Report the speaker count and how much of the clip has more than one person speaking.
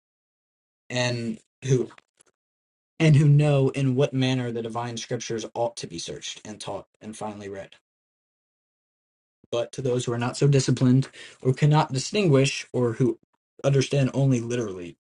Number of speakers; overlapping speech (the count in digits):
1, no overlap